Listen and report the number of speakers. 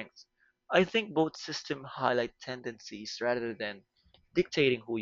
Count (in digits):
1